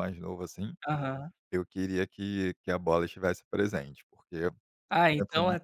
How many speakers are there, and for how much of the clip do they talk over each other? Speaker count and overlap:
2, about 9%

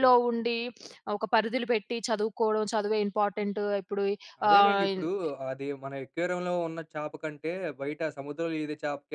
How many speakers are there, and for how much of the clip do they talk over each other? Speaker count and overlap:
2, about 8%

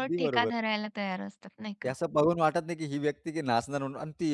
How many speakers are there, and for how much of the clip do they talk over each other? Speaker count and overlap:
2, about 15%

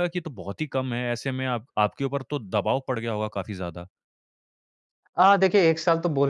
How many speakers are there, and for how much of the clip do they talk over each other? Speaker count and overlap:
2, no overlap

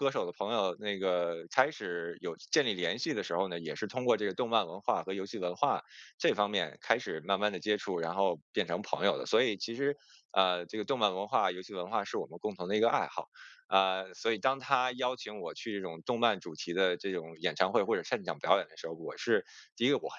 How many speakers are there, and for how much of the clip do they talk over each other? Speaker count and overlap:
1, no overlap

